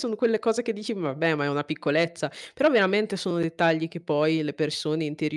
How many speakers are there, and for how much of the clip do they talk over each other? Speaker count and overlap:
one, no overlap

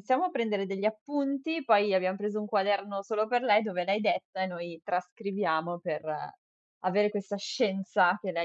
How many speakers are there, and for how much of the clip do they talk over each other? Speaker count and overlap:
one, no overlap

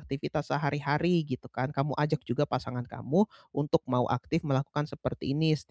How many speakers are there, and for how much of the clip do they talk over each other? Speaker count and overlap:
one, no overlap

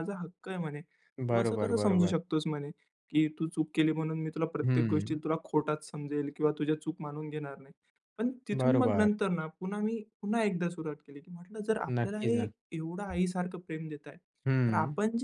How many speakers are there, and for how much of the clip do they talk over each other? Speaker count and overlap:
two, about 18%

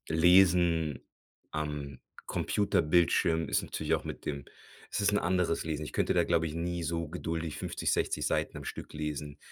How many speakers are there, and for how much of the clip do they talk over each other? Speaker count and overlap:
one, no overlap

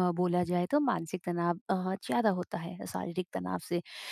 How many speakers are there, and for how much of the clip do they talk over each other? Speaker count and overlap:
one, no overlap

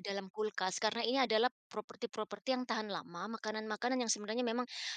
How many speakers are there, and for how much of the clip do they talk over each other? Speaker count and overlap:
one, no overlap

